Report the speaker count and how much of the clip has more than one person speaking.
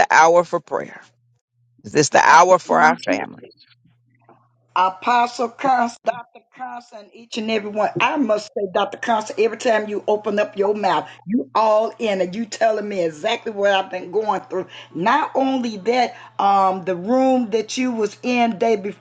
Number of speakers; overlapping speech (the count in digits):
2, about 3%